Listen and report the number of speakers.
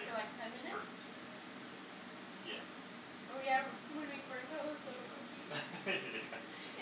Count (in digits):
2